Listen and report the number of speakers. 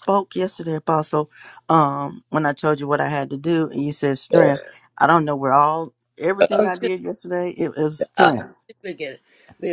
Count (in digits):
2